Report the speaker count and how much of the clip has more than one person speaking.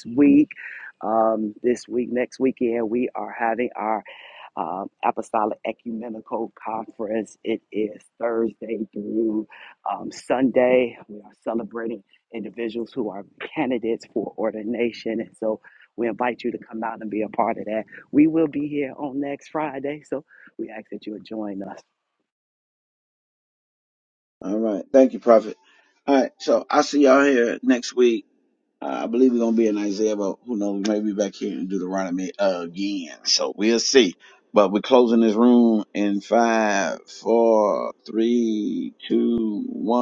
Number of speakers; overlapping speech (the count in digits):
2, no overlap